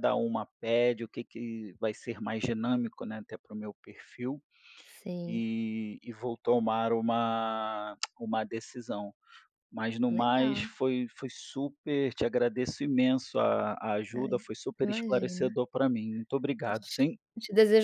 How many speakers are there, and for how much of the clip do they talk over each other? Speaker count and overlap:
two, about 10%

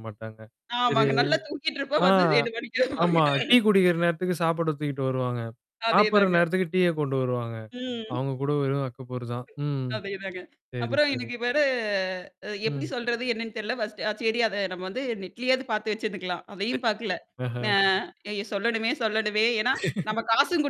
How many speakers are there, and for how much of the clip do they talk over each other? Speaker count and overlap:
two, about 9%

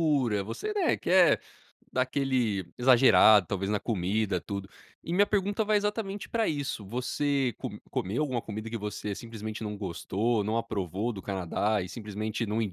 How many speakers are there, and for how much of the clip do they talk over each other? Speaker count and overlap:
one, no overlap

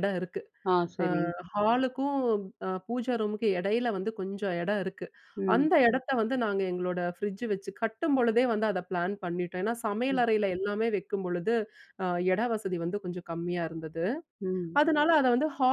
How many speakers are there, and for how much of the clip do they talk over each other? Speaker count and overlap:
two, about 3%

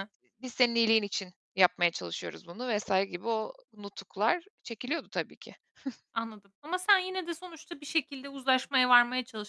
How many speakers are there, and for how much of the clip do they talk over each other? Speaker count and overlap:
two, no overlap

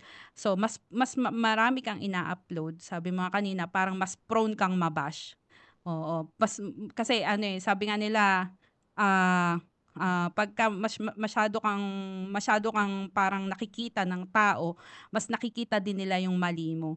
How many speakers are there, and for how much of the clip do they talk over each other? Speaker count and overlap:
one, no overlap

